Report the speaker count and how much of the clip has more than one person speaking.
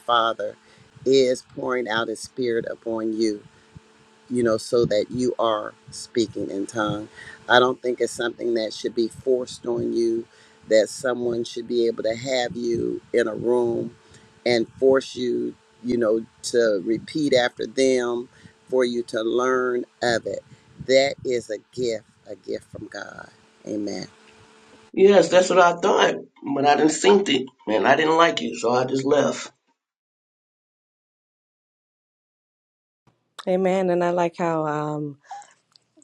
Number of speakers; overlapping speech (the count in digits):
3, no overlap